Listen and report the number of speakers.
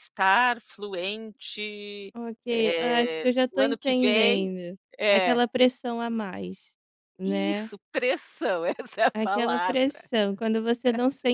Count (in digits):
2